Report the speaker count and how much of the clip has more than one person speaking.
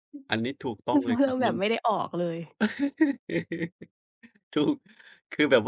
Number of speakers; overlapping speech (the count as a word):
two, about 12%